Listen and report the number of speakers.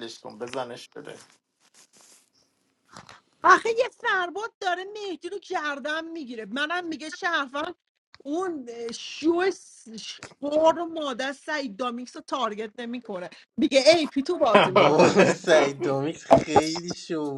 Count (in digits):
3